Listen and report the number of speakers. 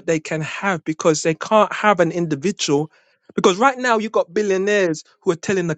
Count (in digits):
1